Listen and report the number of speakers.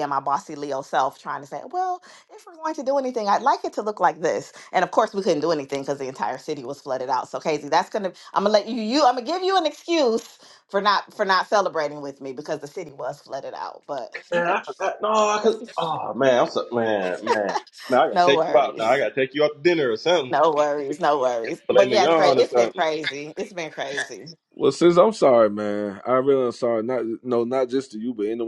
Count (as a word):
three